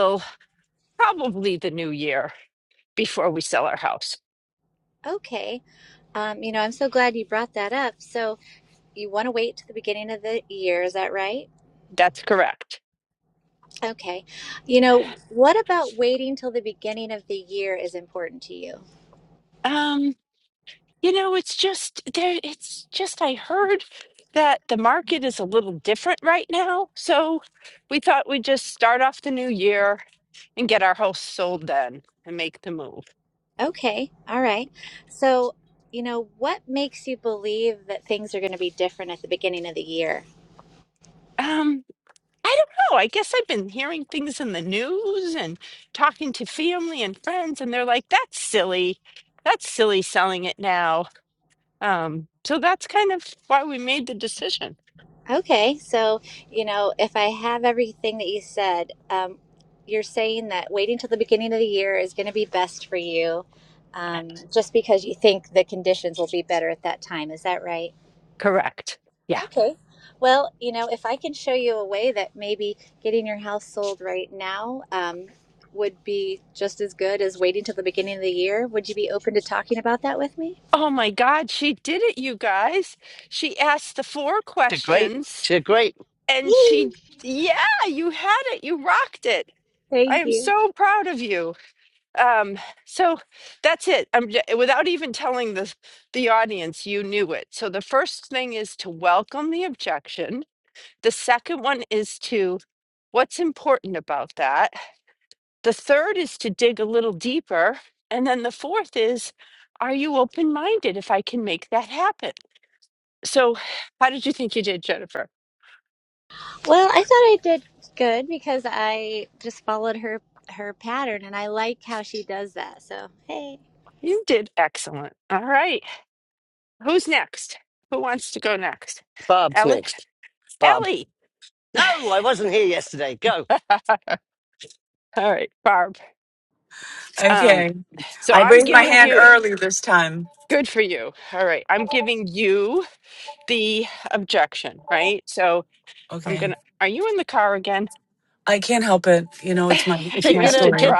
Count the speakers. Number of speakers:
4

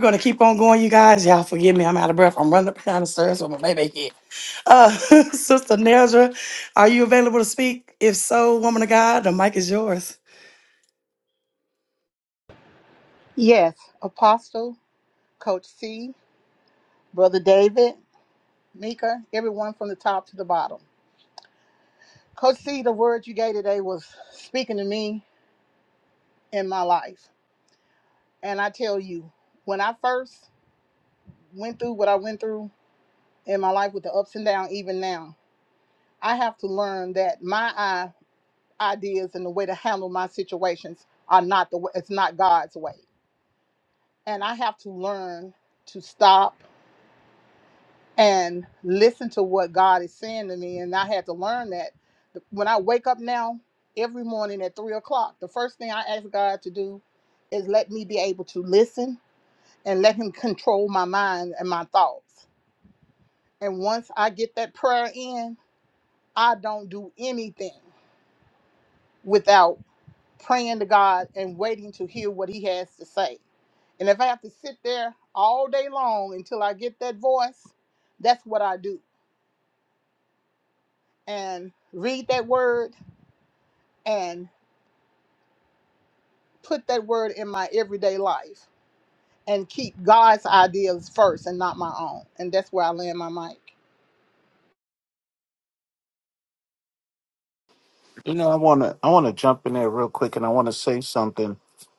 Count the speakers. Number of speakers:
3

